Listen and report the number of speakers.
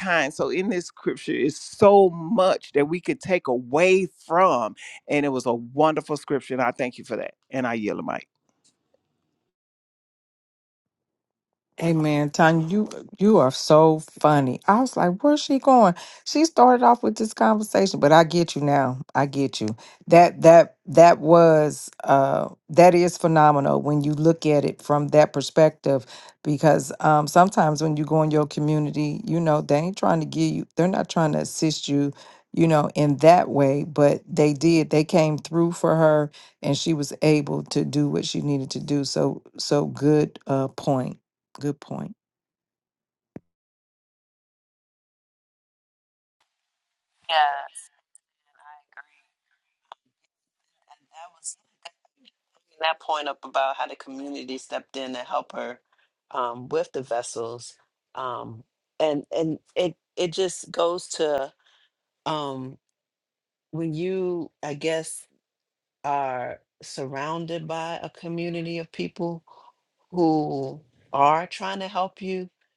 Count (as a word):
three